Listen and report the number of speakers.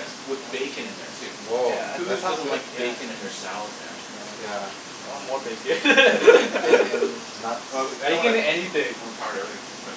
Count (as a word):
three